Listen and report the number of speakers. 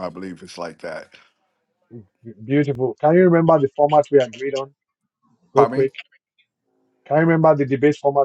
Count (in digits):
2